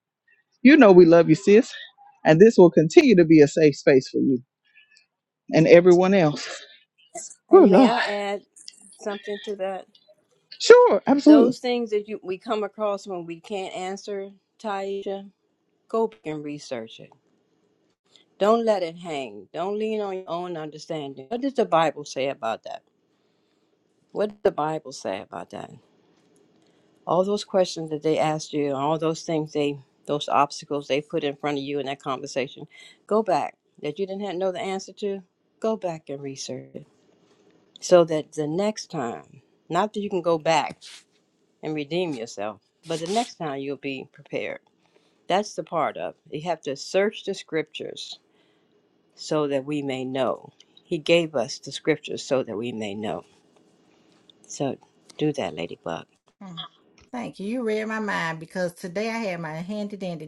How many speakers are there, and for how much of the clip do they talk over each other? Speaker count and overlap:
3, about 1%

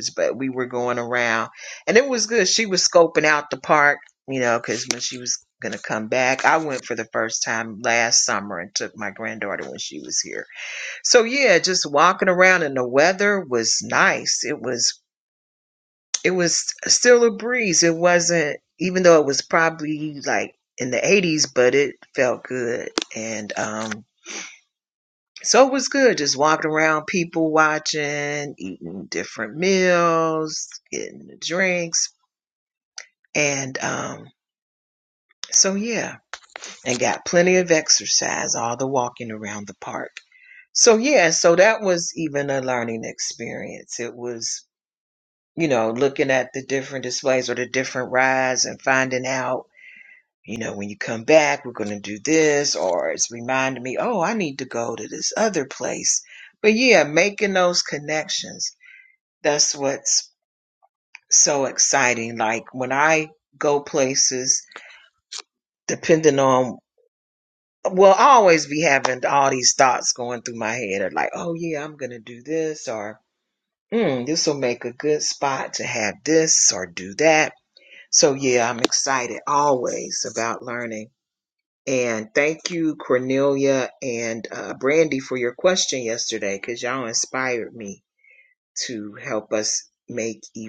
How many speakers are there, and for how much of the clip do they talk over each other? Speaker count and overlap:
1, no overlap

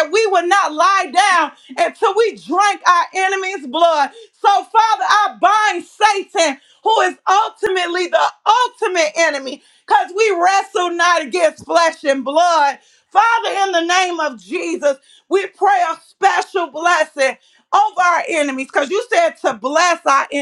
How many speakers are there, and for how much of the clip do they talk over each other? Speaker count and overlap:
1, no overlap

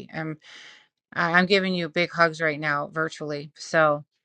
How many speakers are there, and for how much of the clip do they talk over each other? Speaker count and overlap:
1, no overlap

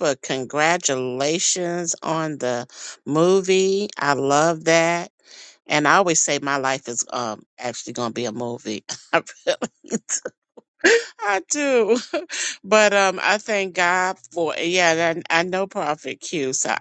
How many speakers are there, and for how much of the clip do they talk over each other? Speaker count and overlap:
1, no overlap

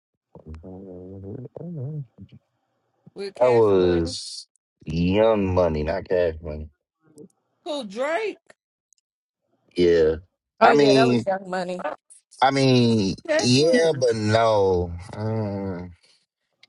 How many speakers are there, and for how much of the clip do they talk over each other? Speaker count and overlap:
3, about 13%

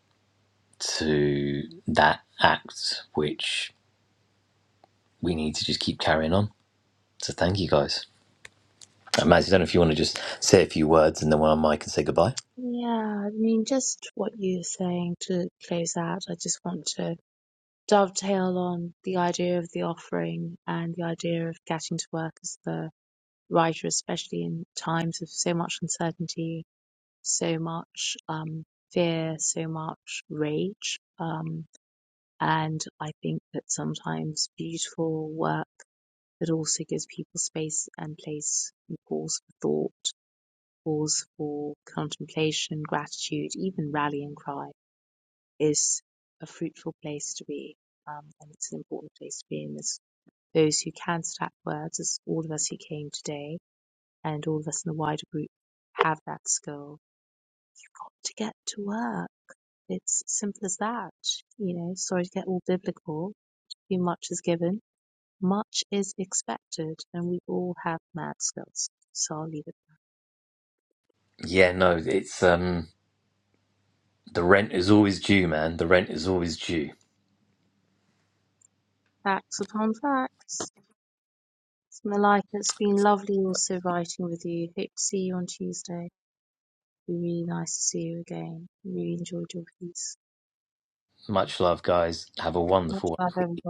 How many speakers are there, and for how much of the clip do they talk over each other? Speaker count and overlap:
2, about 1%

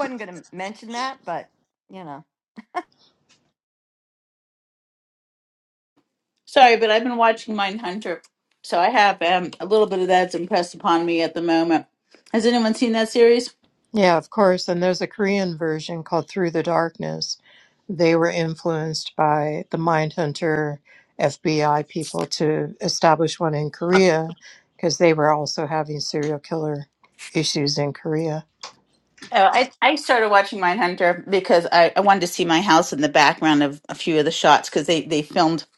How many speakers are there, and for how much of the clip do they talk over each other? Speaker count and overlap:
3, no overlap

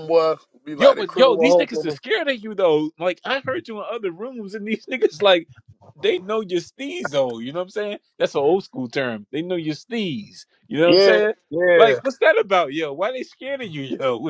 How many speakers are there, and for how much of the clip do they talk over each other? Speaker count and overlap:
2, about 13%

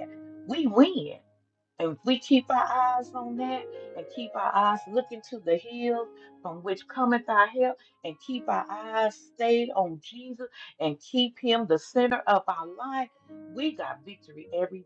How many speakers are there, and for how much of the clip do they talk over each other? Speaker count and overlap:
1, no overlap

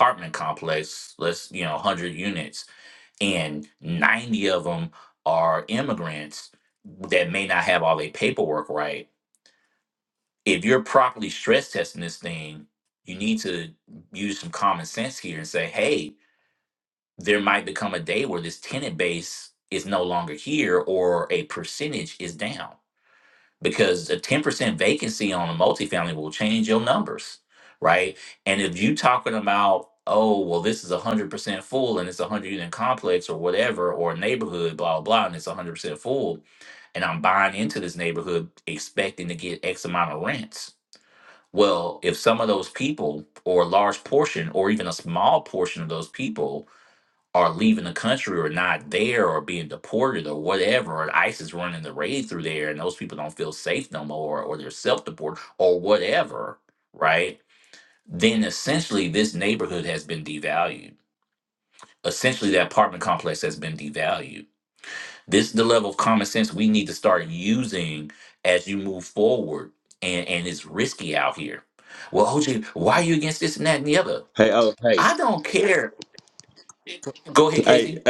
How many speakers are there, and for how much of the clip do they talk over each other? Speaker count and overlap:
2, about 1%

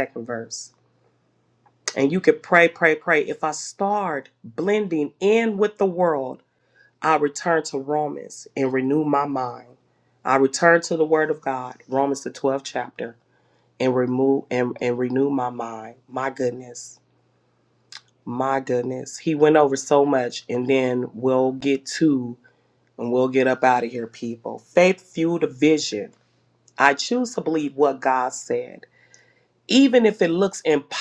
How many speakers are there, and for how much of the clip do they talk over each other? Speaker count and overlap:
1, no overlap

